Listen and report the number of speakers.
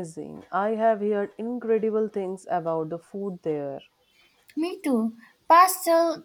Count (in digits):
2